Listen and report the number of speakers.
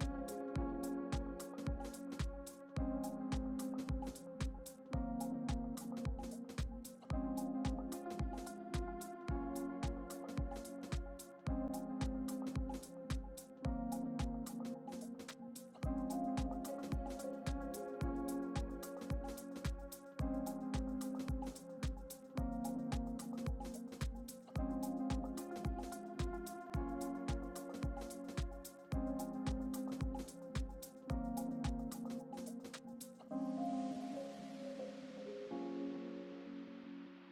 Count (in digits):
0